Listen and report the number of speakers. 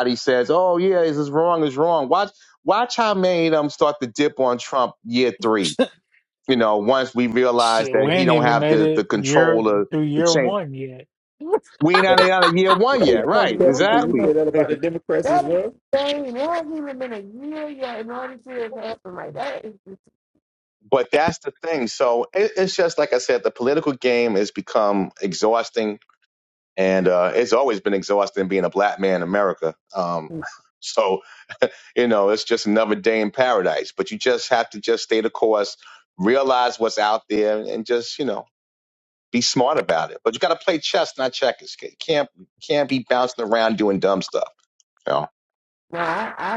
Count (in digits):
4